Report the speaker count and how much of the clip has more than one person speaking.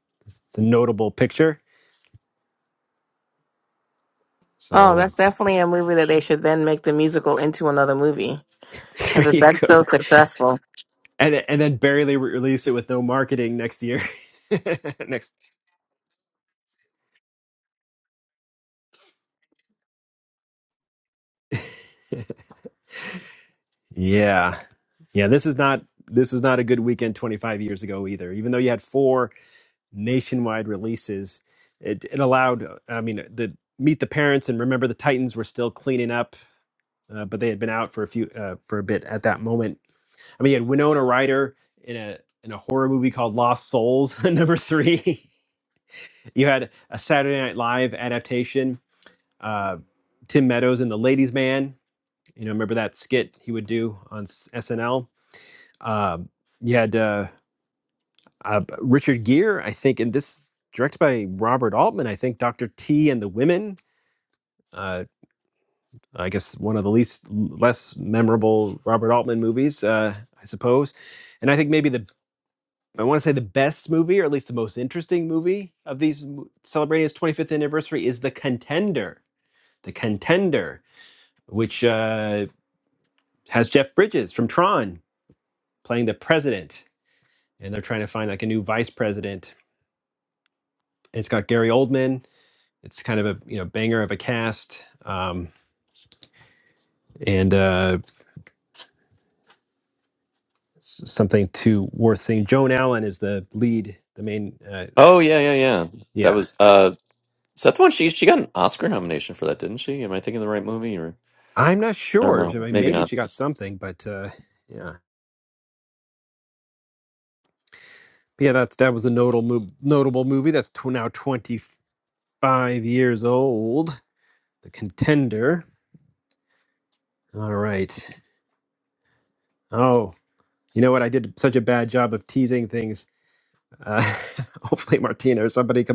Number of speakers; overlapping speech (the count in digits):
3, about 2%